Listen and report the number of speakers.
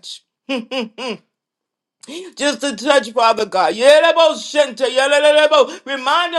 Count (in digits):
1